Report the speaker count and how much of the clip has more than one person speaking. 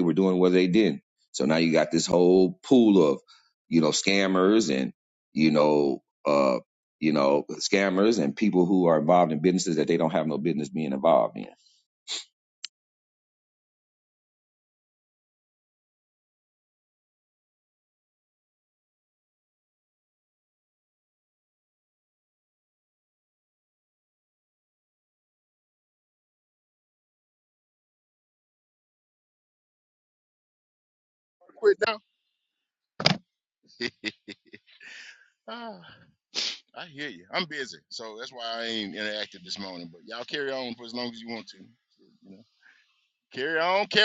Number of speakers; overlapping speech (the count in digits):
2, no overlap